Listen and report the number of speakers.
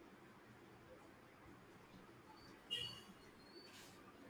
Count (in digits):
0